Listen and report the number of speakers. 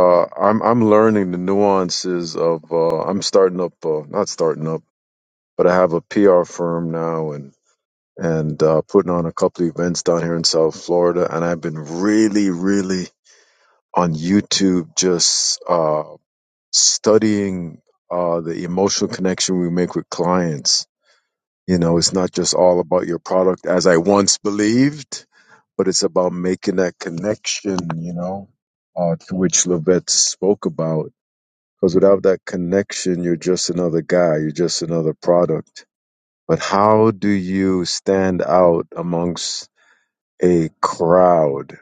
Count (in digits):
1